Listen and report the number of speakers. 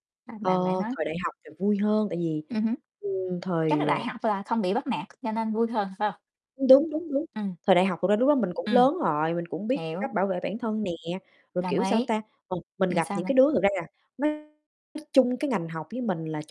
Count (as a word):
two